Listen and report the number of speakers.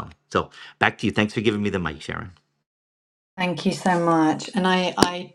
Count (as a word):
two